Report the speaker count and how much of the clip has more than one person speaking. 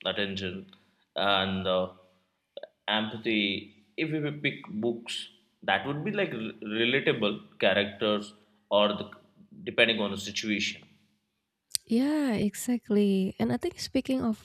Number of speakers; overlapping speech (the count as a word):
two, no overlap